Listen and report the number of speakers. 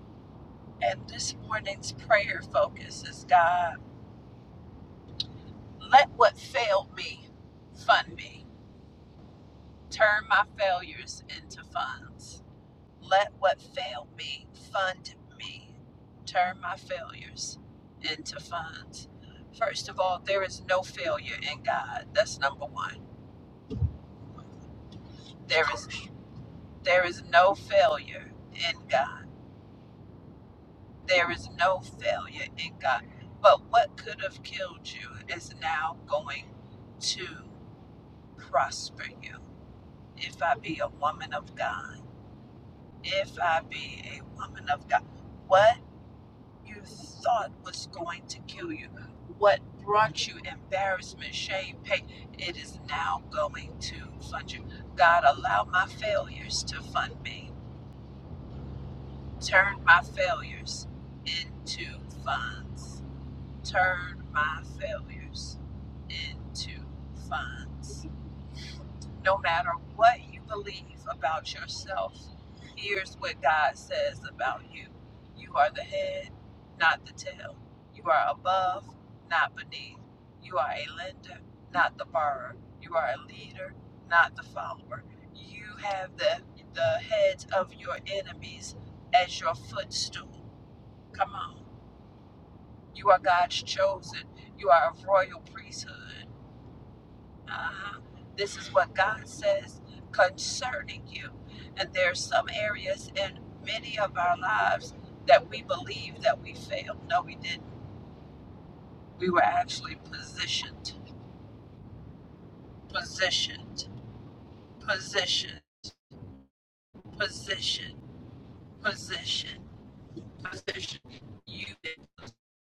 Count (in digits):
1